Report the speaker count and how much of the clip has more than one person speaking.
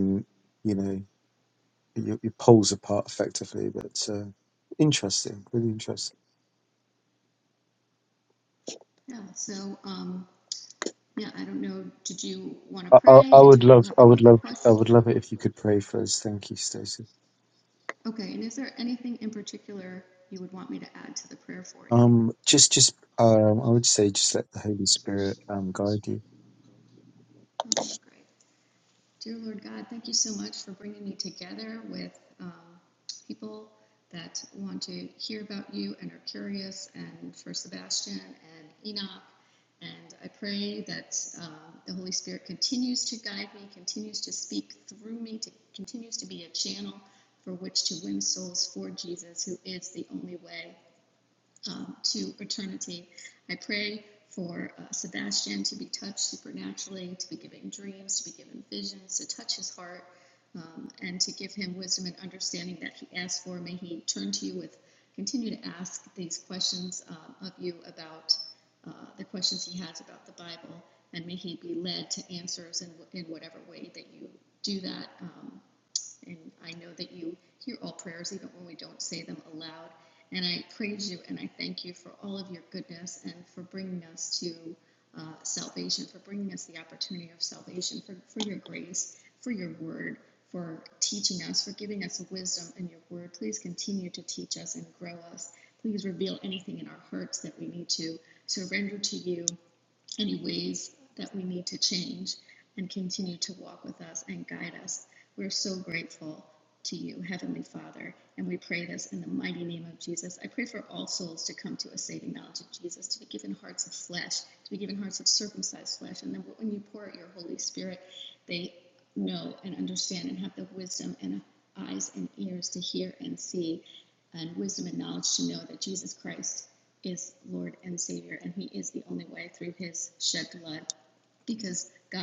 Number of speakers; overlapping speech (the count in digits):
2, about 2%